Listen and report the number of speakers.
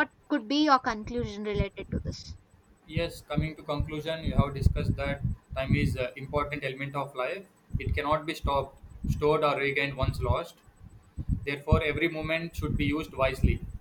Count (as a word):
two